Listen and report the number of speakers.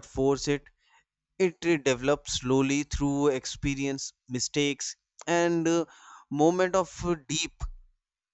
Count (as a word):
one